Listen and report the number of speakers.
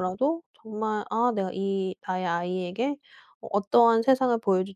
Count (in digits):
1